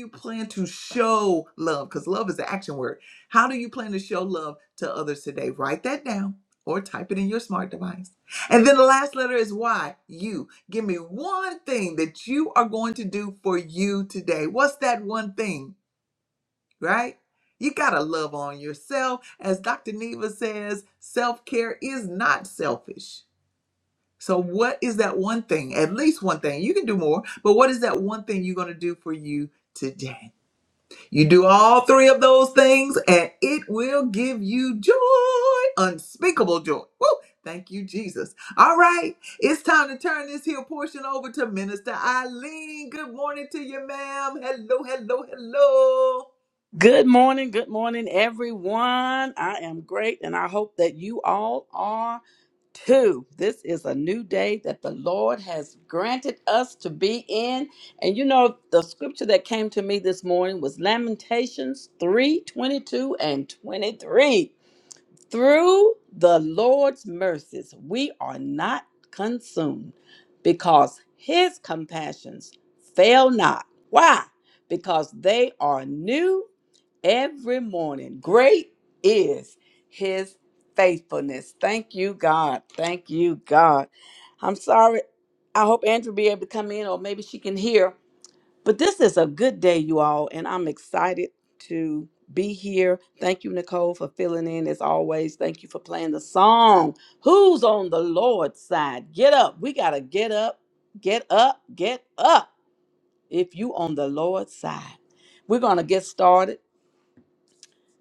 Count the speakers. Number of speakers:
2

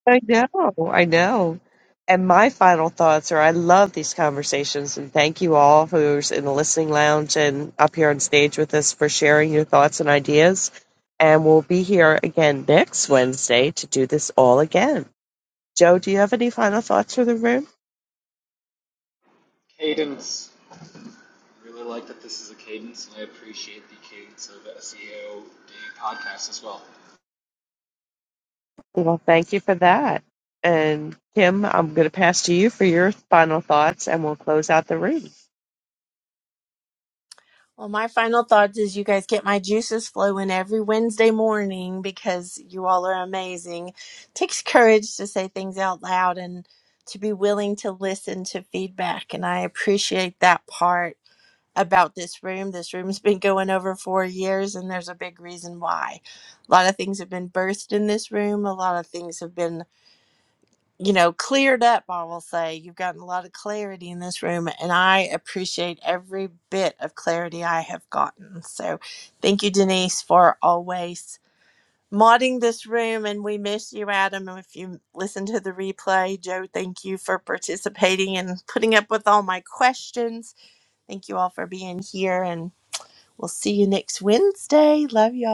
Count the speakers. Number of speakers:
3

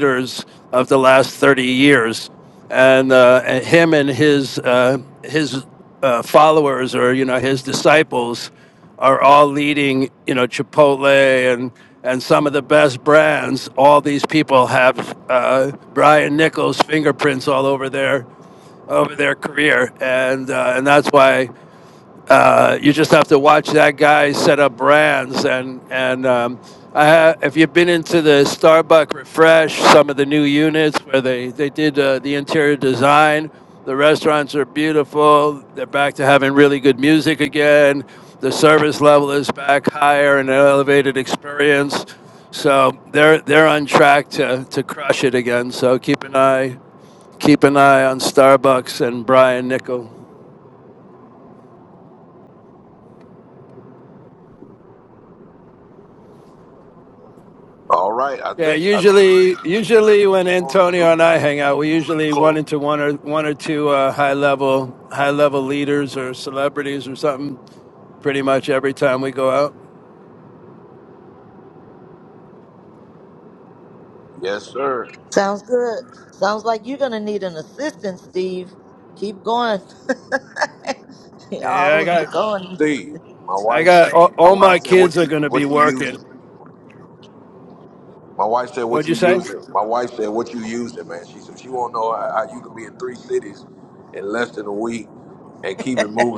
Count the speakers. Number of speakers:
3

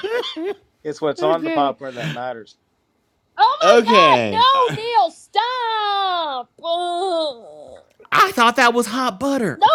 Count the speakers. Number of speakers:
3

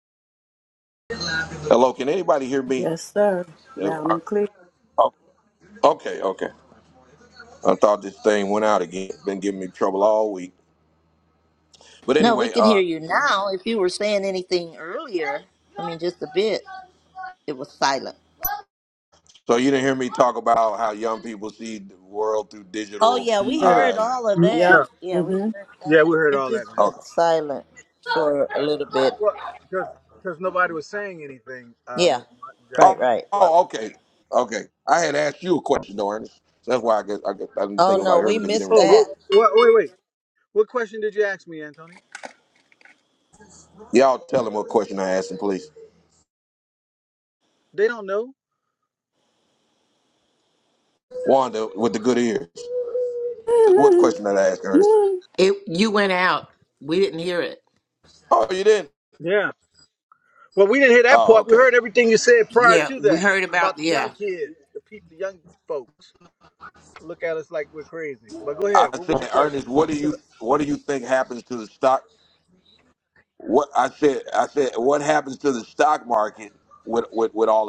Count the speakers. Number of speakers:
5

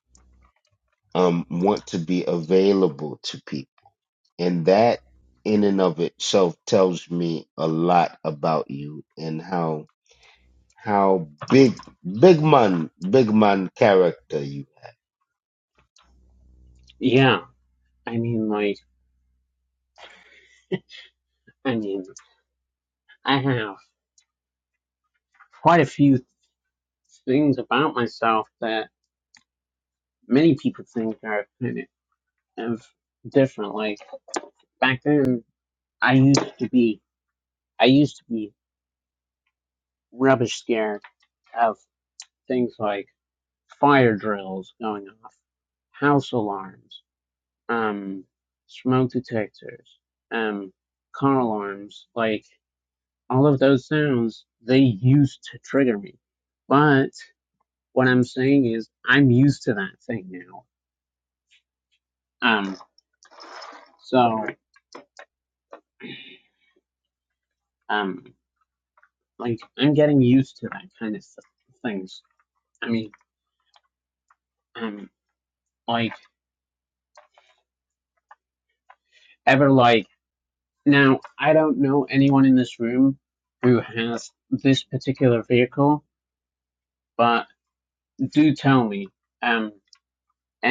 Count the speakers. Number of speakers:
2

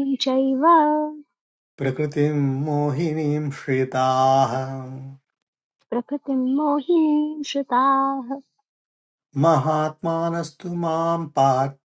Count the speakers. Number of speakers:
2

